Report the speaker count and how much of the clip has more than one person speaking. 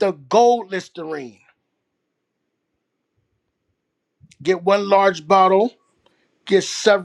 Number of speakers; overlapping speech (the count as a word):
one, no overlap